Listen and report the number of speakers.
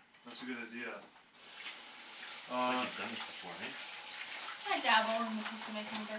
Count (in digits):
3